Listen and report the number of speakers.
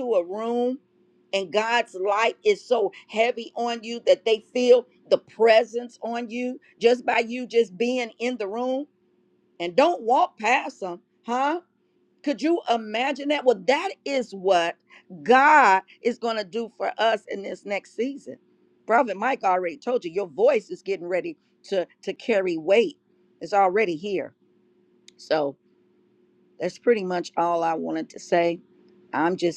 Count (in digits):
1